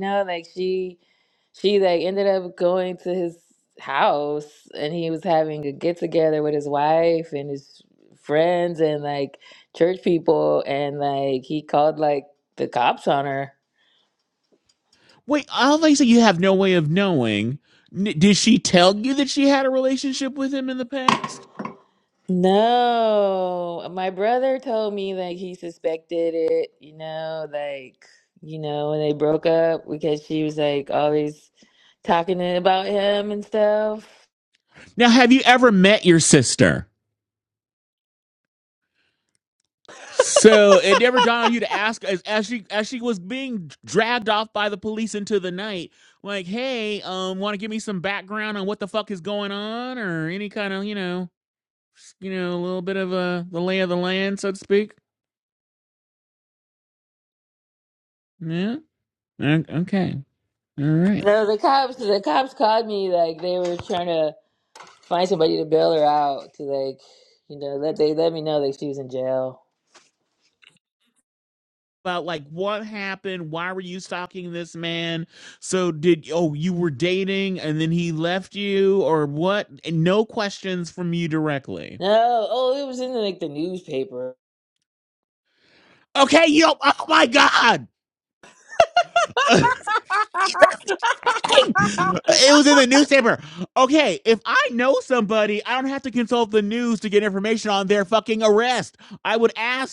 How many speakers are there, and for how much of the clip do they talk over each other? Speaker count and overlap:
2, under 1%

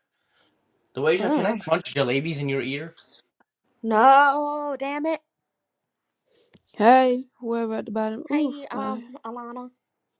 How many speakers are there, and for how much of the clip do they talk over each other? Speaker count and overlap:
3, about 12%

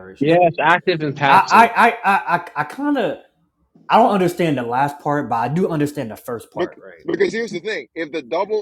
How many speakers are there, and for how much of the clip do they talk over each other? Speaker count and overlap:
3, about 13%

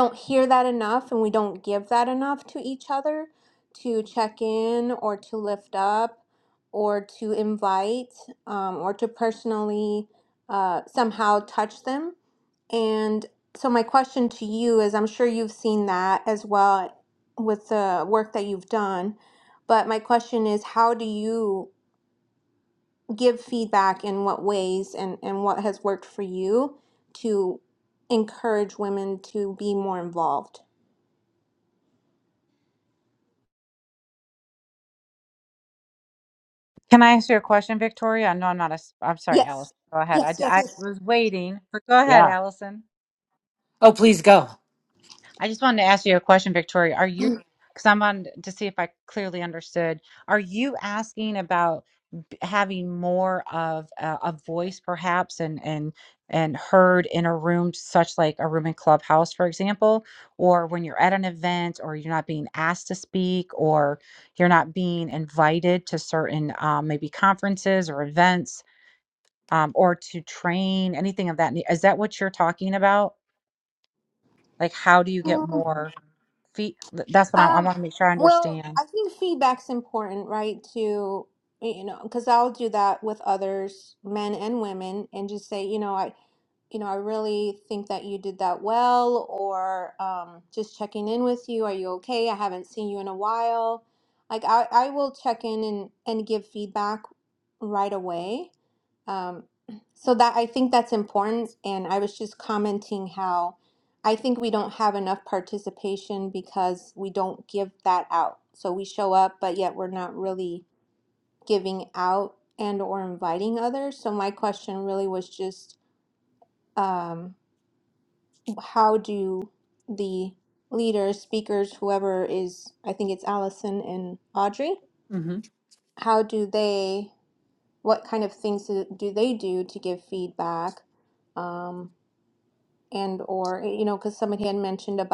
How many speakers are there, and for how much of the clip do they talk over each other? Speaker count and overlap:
3, about 2%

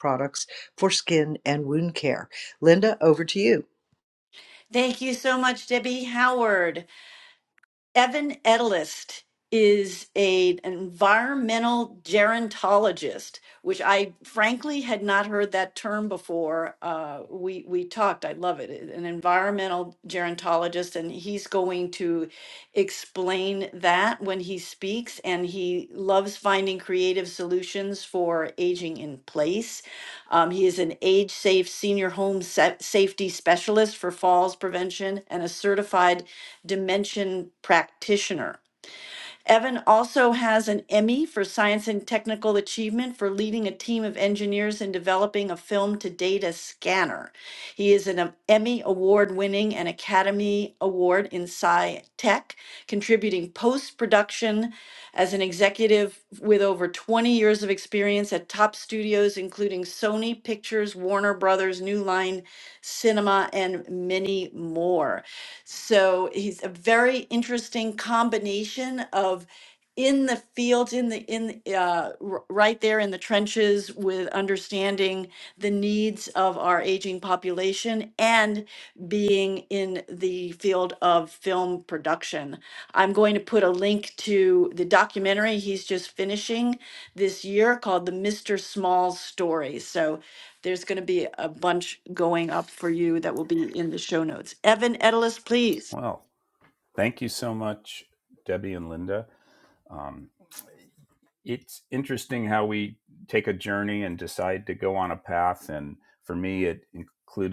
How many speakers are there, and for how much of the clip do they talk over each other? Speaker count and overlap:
3, no overlap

